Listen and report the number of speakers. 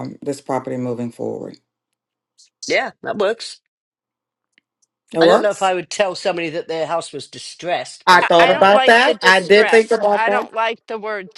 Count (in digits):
3